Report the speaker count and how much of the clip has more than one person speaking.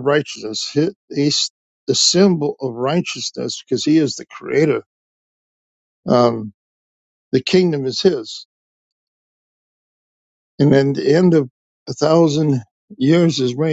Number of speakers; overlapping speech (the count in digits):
1, no overlap